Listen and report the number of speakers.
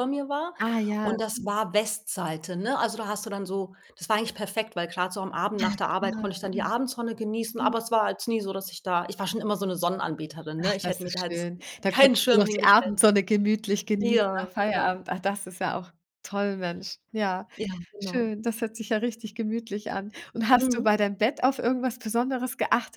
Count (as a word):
two